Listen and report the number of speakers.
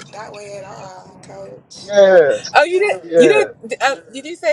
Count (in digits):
3